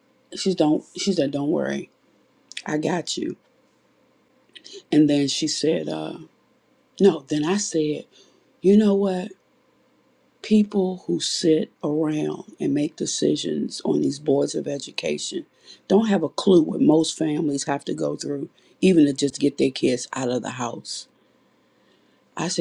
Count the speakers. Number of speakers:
one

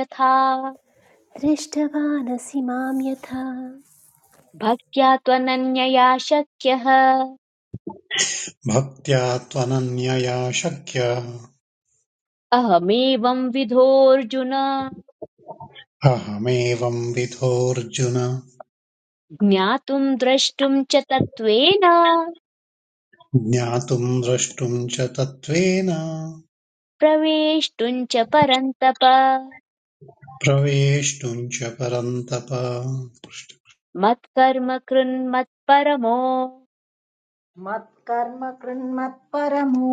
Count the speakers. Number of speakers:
four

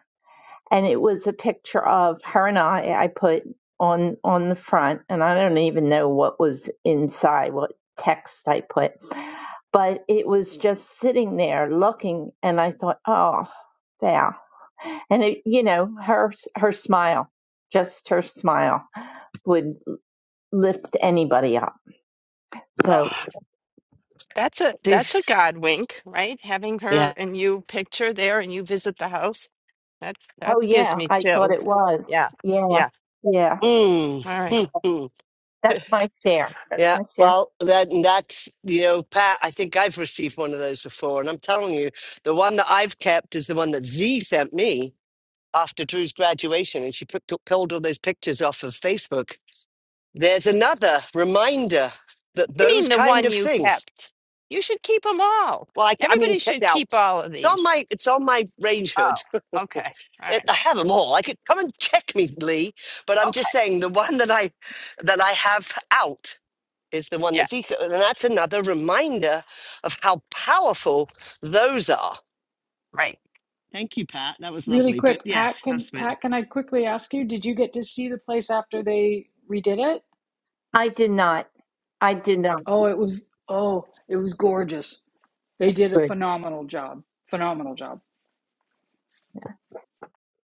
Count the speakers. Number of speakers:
four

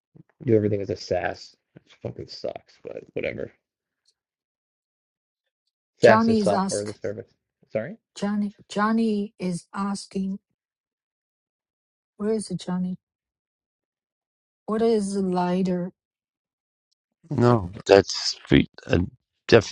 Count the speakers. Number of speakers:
three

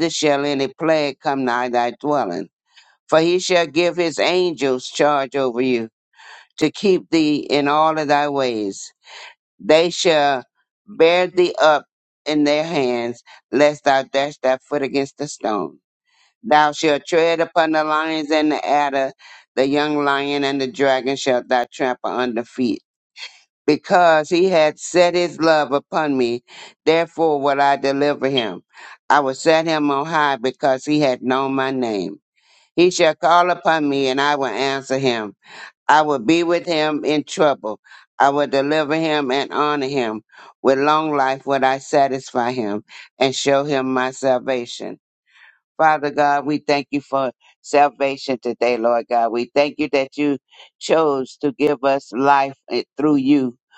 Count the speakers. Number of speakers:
one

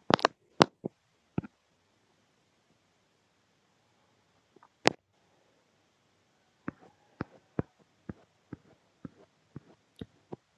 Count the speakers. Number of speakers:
zero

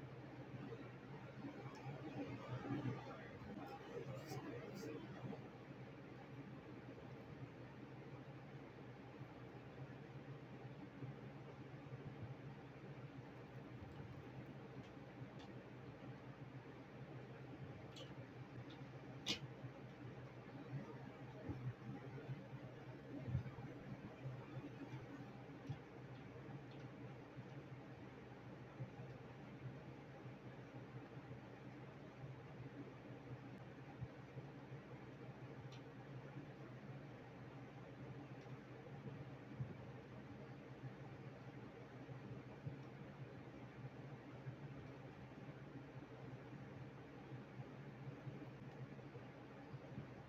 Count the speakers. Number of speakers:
zero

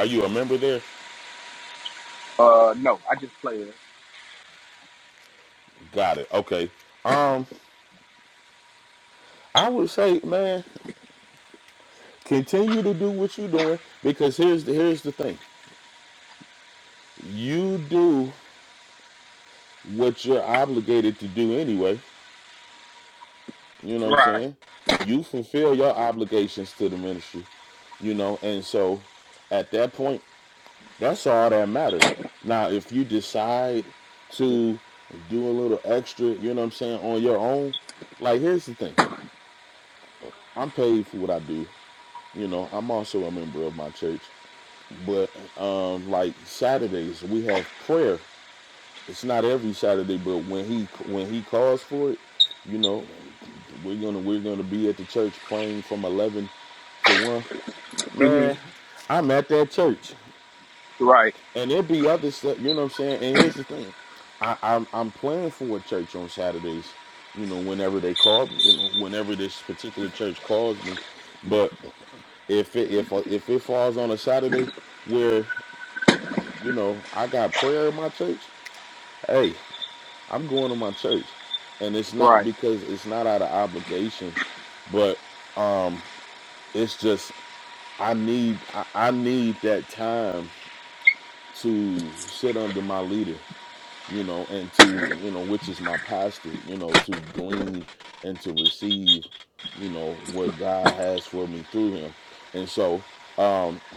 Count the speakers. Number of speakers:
two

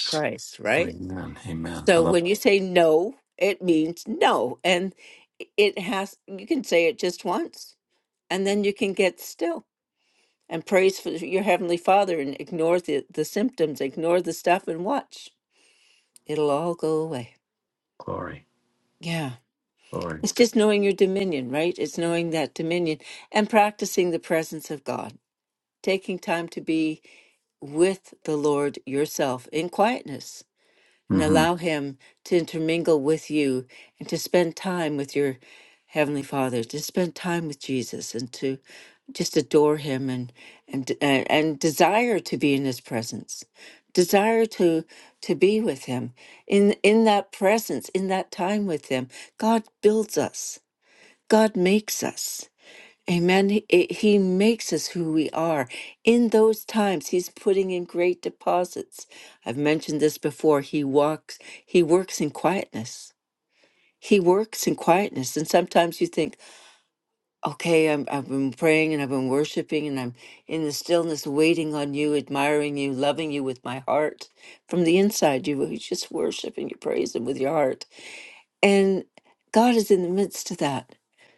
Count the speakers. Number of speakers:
two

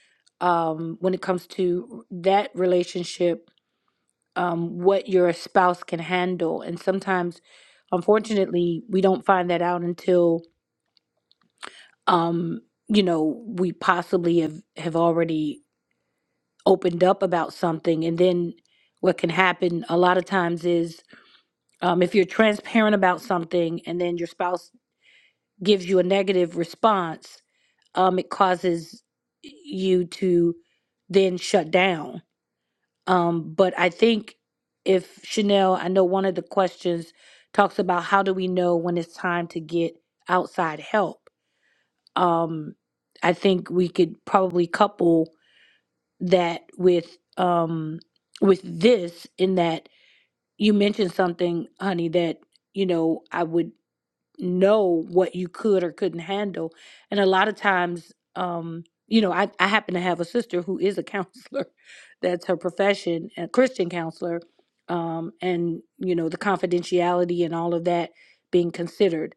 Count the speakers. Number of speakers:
one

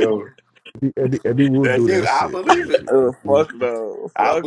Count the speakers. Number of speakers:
three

